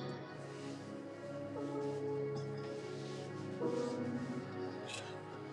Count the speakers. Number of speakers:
zero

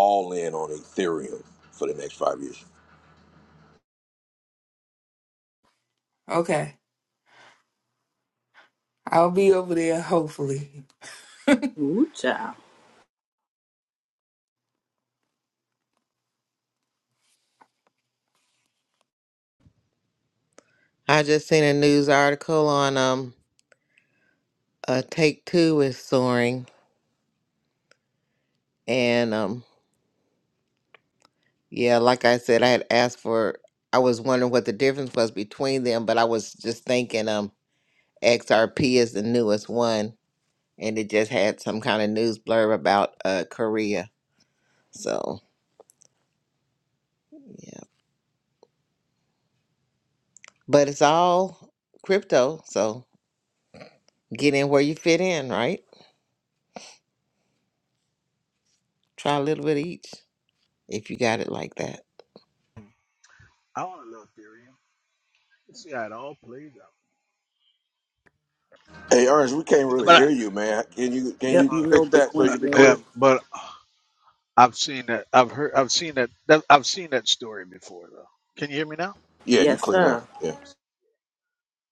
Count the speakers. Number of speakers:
five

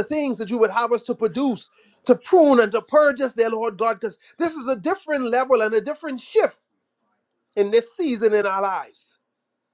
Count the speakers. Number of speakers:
one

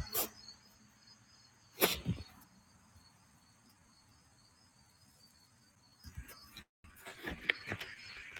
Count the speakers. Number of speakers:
zero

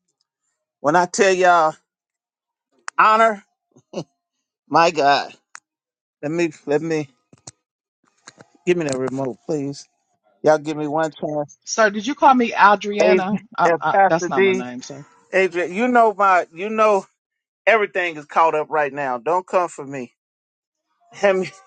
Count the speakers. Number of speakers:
two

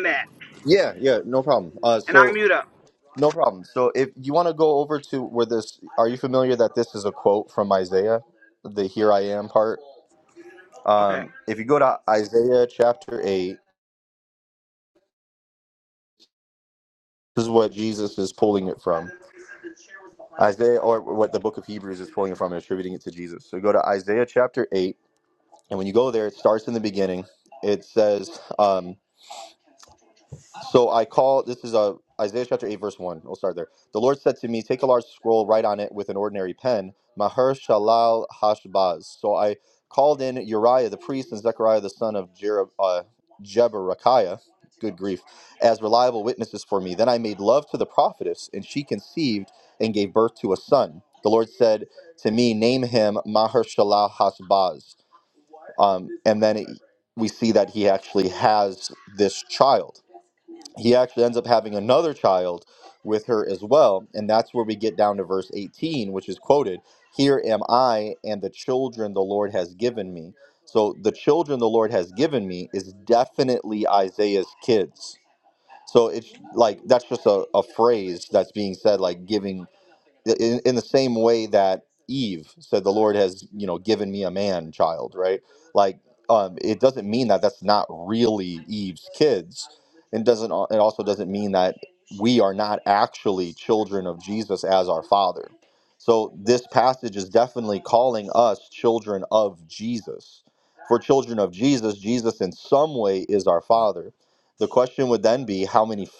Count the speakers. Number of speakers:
two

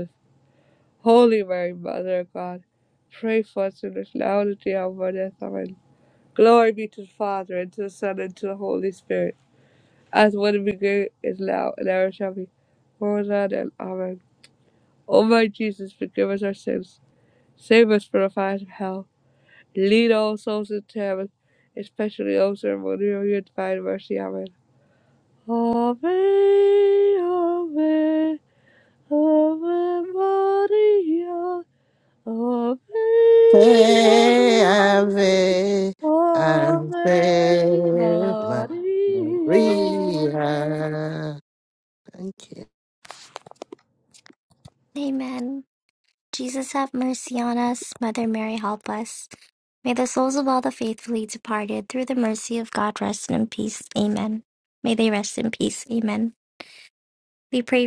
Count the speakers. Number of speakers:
three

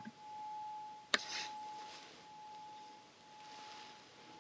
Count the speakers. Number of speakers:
zero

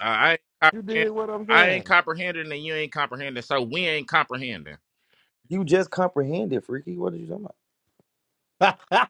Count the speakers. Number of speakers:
three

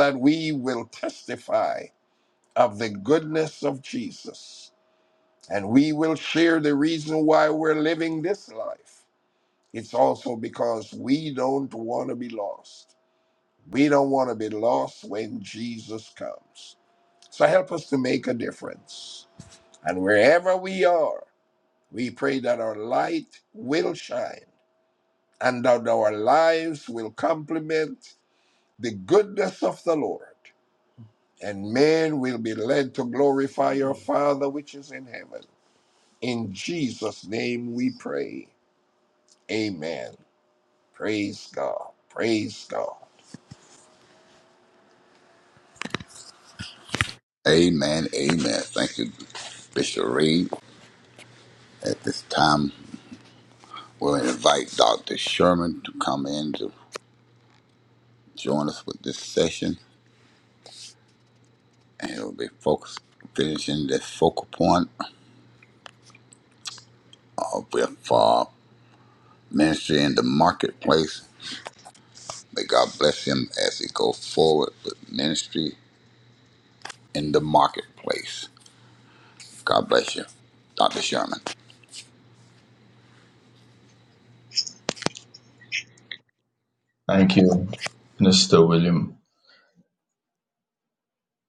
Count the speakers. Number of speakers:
three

